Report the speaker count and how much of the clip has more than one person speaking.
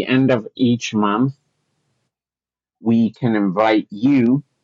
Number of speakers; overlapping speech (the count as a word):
one, no overlap